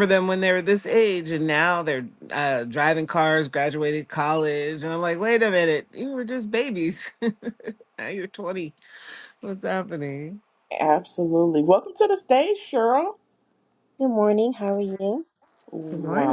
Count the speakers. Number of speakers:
3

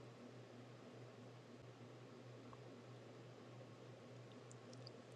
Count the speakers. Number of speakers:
0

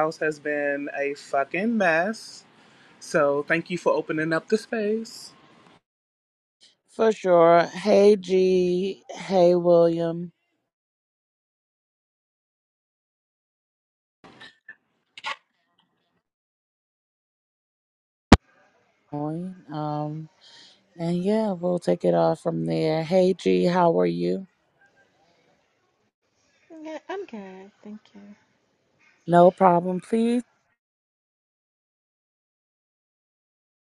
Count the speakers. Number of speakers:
3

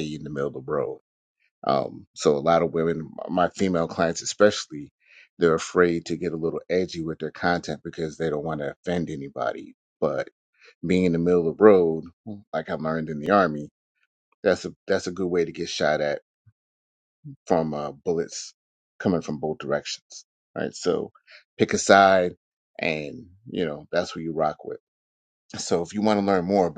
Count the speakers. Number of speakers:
1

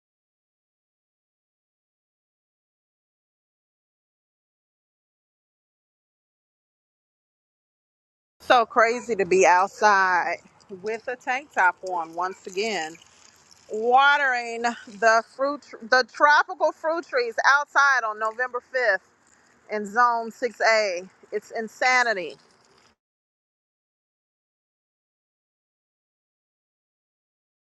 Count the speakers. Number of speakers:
1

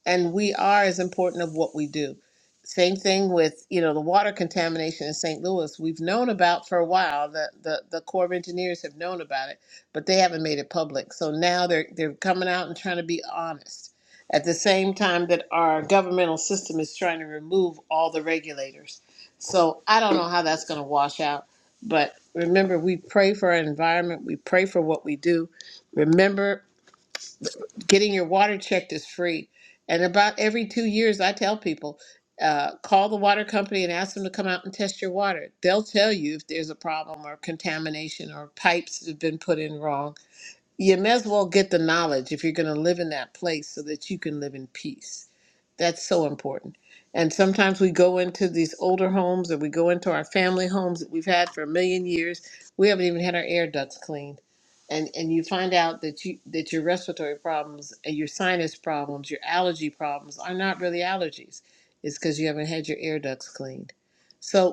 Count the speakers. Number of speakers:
1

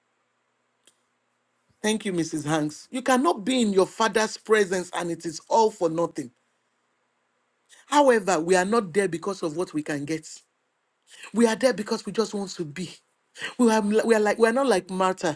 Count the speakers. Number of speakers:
1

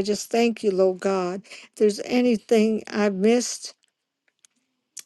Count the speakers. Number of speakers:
1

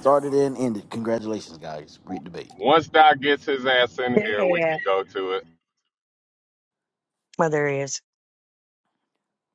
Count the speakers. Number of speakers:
3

